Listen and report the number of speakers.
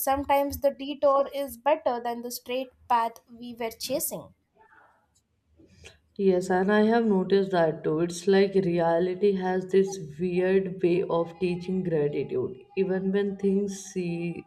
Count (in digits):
2